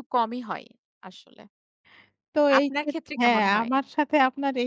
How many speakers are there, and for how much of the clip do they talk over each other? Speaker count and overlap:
2, about 25%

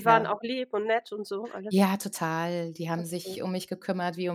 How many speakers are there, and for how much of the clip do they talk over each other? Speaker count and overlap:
2, about 16%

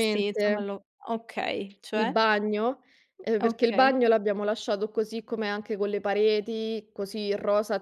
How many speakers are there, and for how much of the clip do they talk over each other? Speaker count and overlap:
2, about 16%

